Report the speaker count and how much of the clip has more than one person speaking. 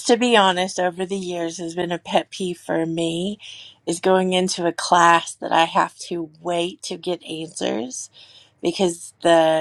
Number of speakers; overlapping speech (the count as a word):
one, no overlap